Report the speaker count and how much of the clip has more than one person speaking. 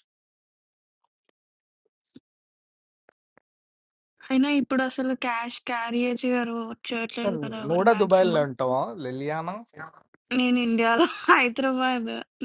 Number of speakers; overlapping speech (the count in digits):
2, about 10%